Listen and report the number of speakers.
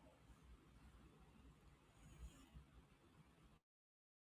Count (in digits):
0